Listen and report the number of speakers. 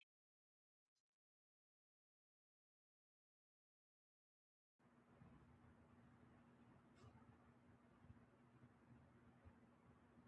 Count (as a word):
zero